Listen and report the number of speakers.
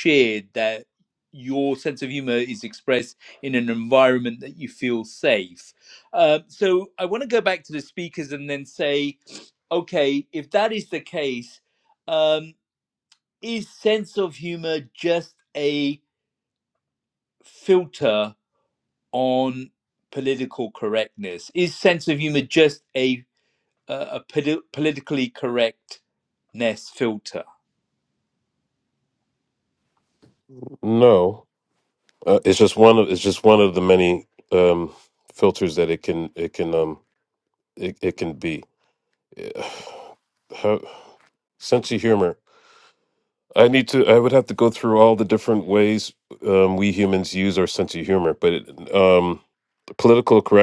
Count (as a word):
two